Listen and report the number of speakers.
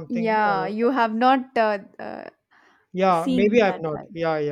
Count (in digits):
2